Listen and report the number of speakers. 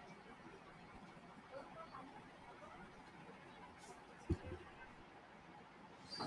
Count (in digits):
0